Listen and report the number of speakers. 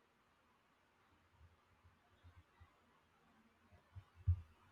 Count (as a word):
zero